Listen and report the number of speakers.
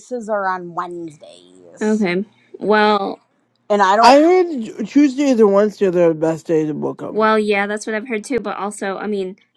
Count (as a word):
three